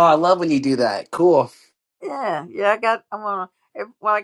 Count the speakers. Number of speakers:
2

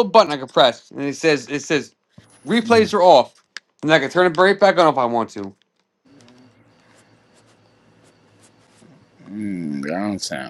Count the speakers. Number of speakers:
2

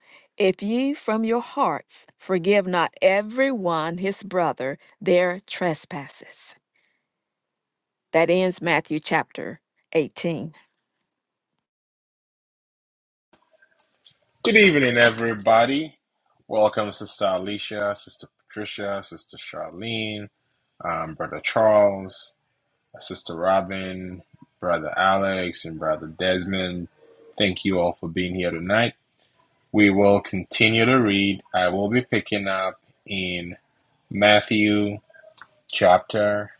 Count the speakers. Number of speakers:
2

